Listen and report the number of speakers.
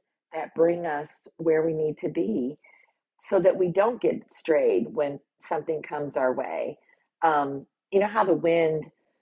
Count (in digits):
1